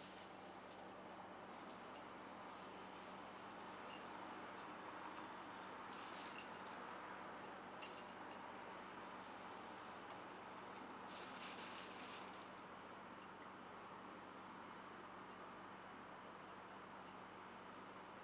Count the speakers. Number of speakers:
zero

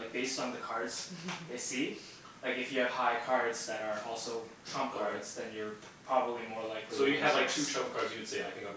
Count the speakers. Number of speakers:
two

